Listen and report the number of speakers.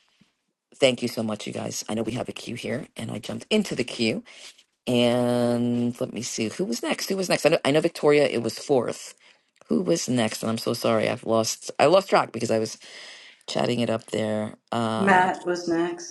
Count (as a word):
two